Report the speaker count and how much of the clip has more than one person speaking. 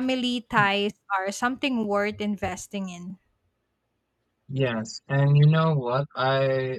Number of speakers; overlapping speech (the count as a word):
two, no overlap